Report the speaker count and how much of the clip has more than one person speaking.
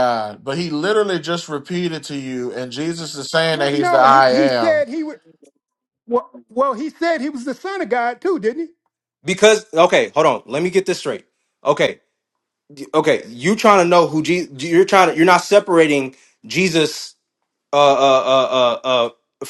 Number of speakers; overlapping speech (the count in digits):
3, about 6%